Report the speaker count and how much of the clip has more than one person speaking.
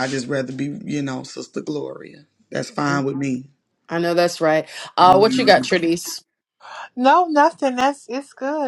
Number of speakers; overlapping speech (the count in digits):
3, about 9%